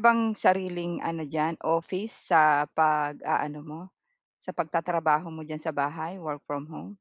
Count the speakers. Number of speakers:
one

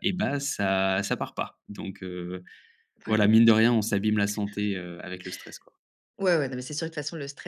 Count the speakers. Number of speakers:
two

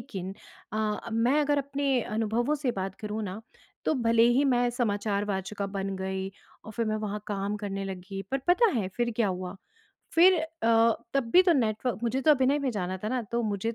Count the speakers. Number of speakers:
one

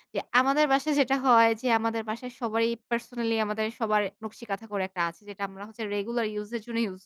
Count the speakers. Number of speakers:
one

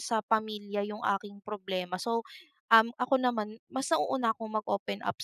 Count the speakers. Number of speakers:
one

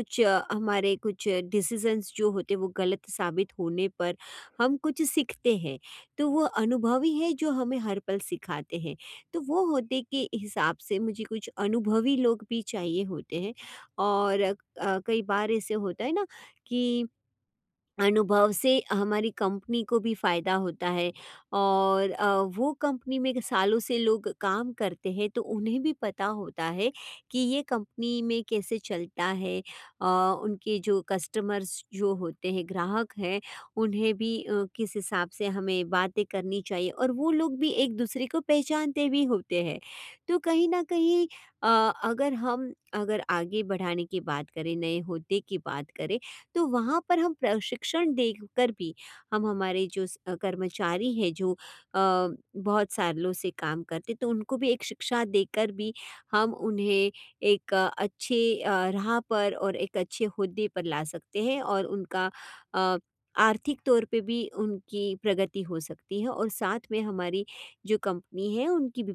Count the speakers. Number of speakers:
one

